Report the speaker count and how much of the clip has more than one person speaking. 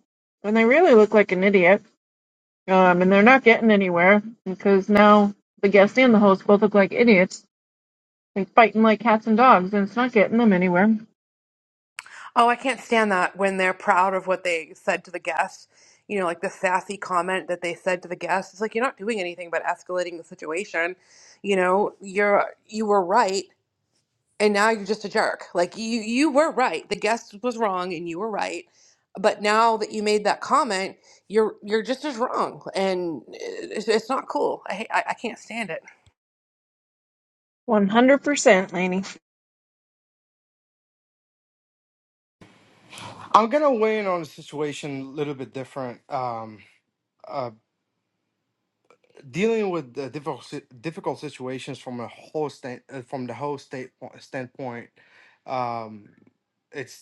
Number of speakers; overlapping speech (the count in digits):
3, no overlap